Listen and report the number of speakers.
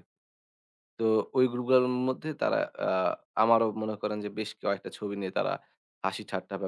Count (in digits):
1